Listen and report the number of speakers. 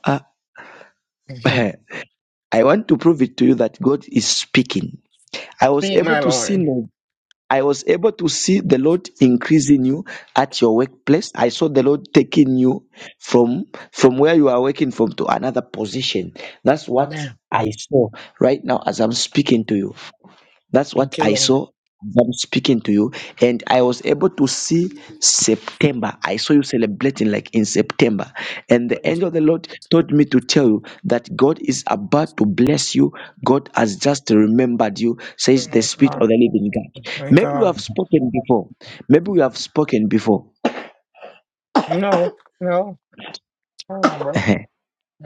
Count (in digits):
2